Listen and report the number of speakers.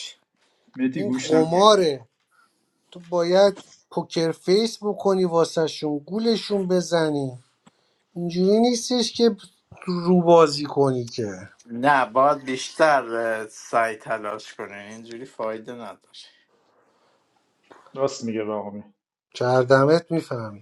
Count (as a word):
three